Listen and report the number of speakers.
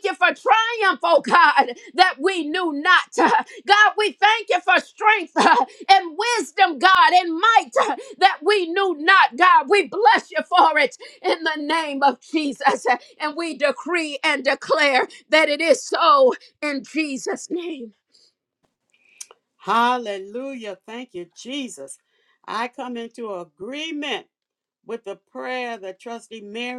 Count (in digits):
2